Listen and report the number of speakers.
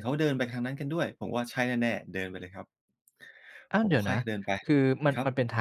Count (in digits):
2